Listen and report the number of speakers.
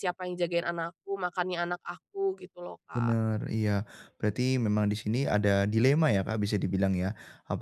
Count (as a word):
two